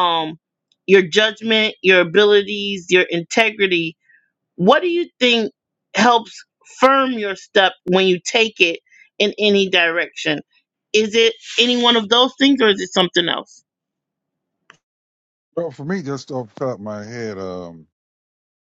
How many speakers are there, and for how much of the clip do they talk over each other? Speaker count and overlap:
two, no overlap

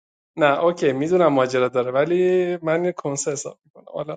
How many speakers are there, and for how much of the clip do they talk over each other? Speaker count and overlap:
one, no overlap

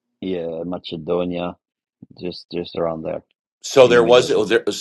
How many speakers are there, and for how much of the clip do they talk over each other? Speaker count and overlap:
two, about 13%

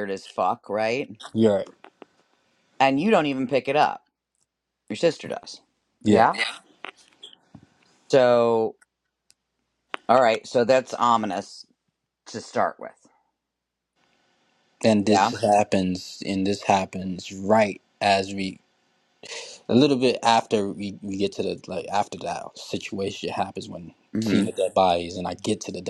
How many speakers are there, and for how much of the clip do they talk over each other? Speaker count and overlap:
two, about 3%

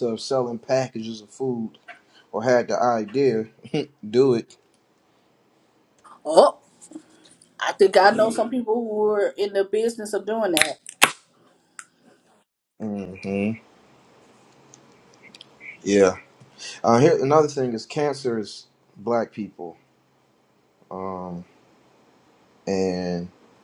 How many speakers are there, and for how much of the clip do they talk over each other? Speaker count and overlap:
two, no overlap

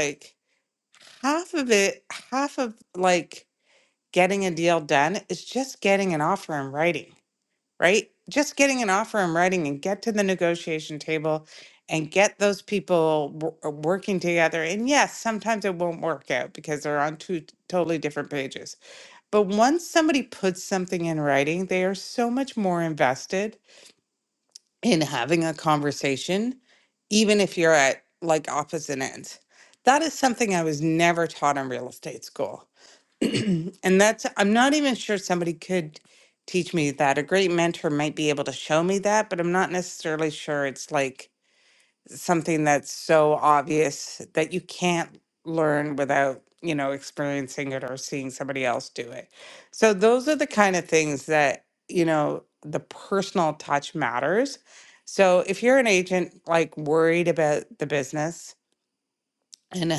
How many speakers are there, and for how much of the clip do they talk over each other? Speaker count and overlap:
one, no overlap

